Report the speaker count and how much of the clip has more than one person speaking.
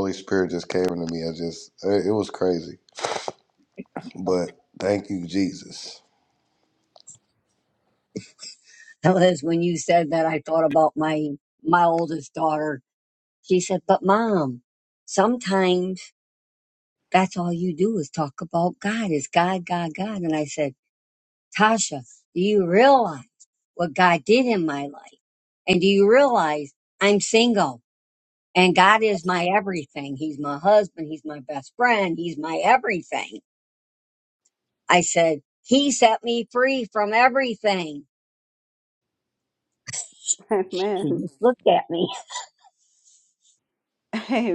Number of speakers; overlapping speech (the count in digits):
3, about 1%